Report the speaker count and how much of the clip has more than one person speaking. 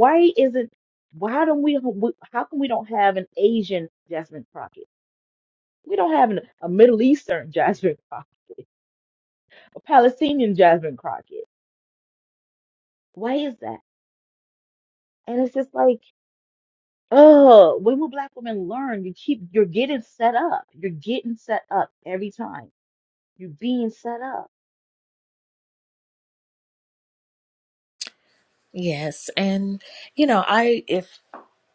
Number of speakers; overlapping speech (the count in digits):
2, no overlap